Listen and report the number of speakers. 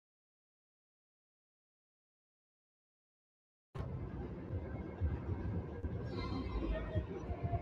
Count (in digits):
0